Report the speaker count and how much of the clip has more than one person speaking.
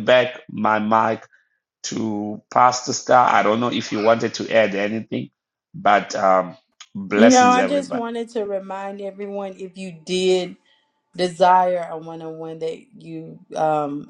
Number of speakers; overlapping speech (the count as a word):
two, about 6%